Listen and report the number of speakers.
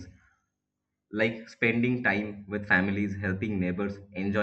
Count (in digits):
1